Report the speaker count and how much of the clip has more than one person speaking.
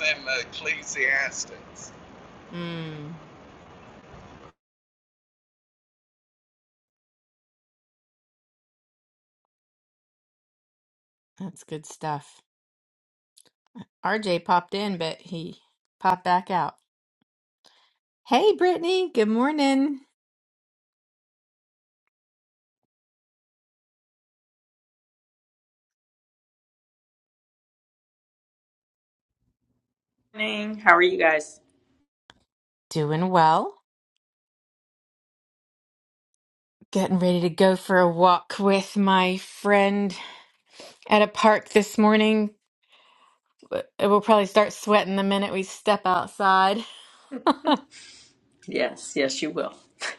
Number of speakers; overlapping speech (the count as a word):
three, no overlap